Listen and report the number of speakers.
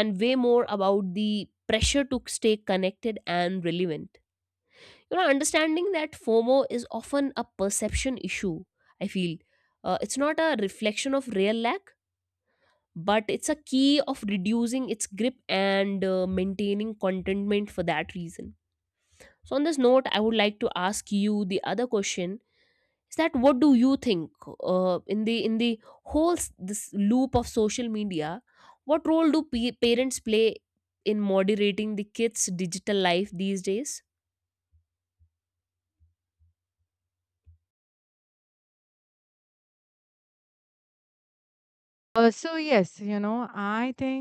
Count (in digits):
2